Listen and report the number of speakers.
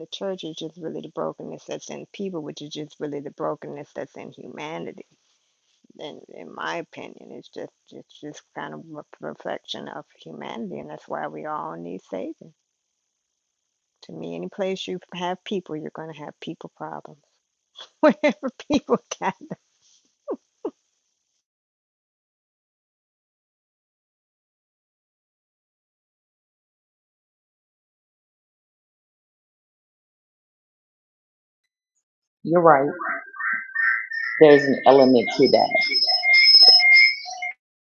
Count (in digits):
2